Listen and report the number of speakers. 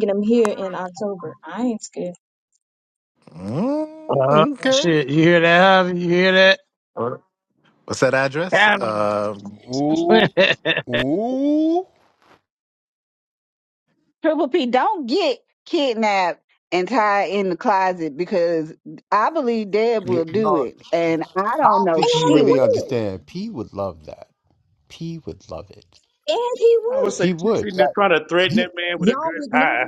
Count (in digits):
6